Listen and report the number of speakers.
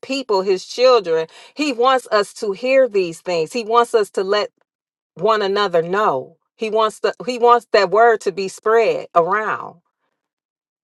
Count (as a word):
one